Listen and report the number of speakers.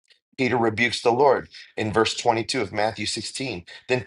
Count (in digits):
1